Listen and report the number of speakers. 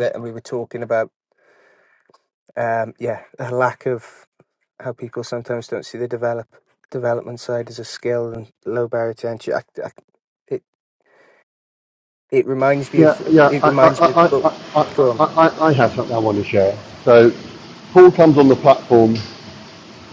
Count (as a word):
two